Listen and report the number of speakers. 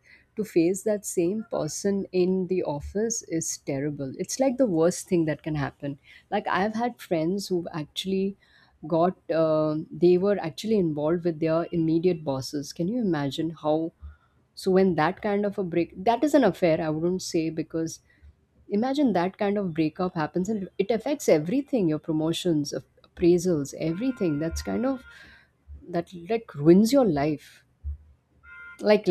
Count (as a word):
one